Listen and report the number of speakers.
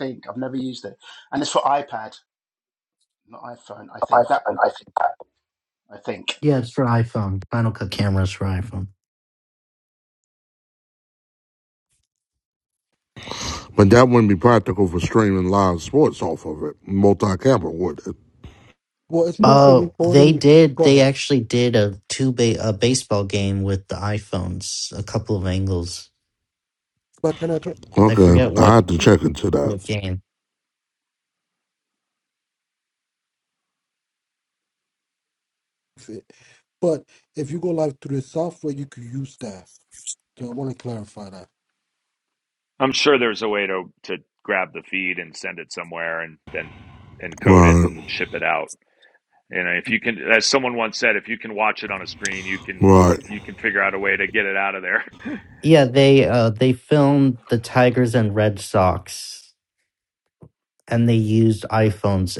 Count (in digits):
5